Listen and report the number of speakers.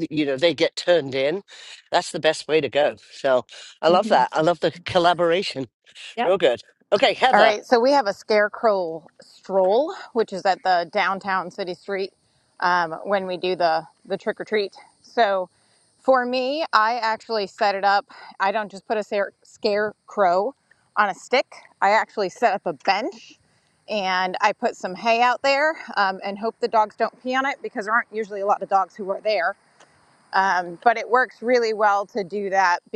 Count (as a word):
two